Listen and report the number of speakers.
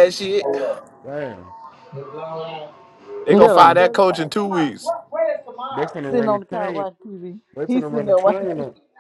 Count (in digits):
3